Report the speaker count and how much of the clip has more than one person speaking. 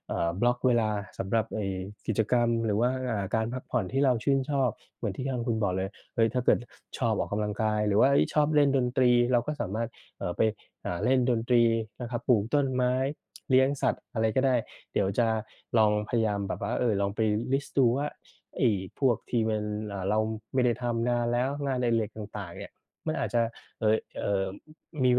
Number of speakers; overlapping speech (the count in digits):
1, no overlap